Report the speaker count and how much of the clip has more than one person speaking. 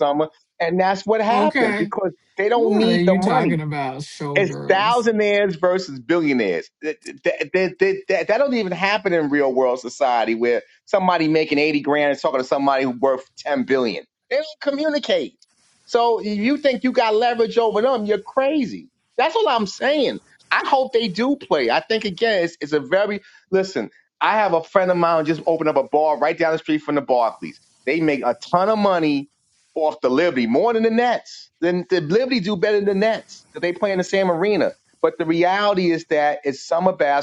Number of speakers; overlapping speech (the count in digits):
2, about 6%